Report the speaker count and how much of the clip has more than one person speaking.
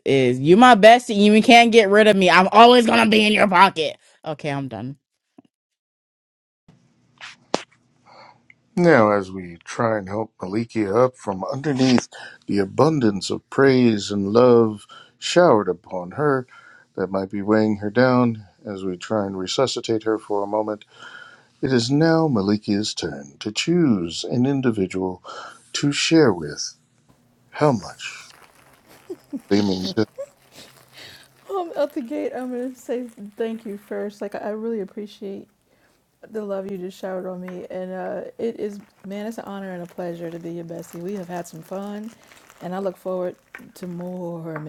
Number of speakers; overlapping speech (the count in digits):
3, no overlap